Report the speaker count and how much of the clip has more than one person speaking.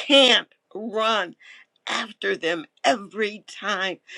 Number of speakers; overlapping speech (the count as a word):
one, no overlap